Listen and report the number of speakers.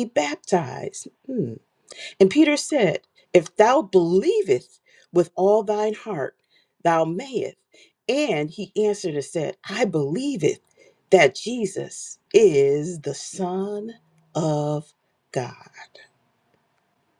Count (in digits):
1